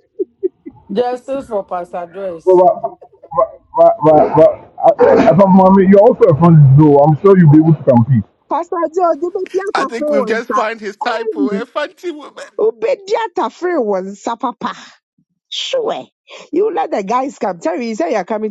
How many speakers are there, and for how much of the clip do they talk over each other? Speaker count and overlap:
4, about 8%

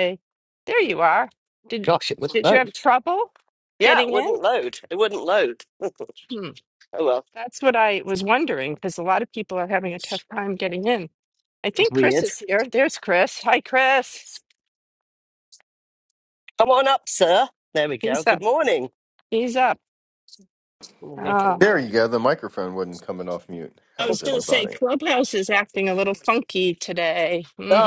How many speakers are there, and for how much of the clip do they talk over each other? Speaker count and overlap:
3, about 13%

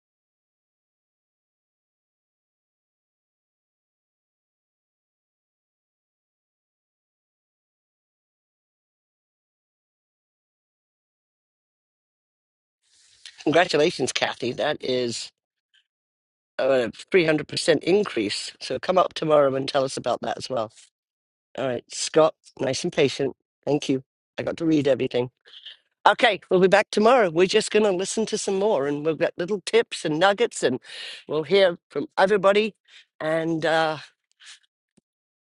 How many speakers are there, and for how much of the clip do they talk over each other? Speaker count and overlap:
1, no overlap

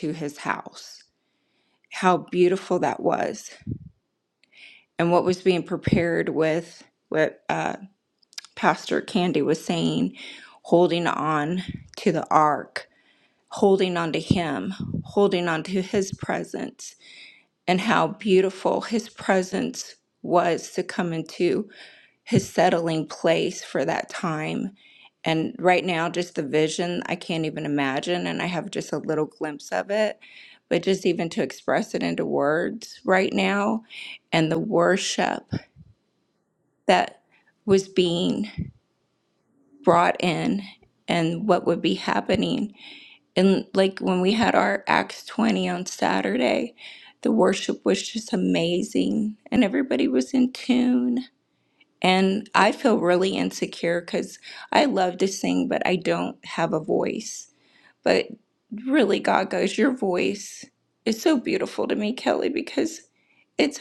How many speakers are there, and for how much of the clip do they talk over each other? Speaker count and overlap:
1, no overlap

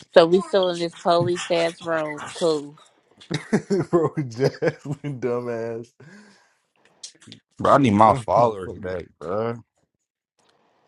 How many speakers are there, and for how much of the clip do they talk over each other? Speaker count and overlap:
3, about 11%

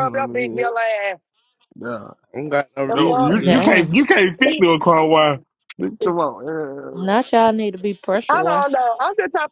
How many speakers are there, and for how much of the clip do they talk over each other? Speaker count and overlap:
4, about 31%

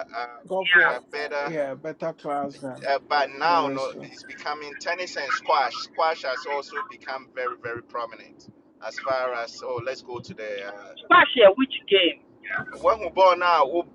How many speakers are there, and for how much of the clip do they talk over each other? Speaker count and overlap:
3, about 8%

